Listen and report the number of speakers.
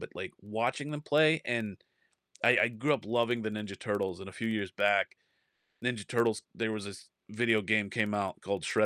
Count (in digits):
1